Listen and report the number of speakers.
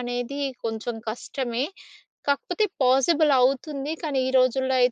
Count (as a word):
one